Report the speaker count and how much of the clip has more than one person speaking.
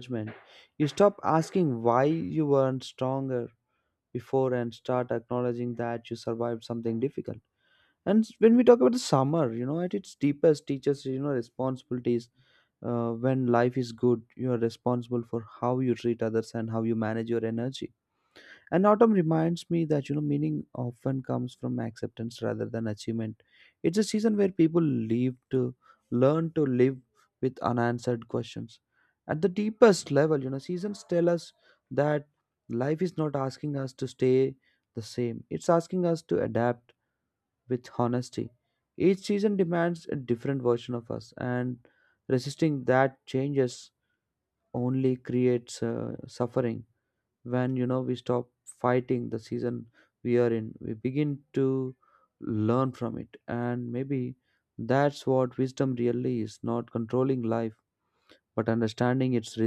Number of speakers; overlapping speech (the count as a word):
one, no overlap